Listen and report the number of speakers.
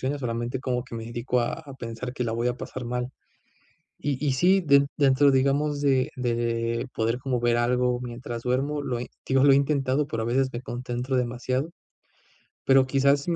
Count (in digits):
1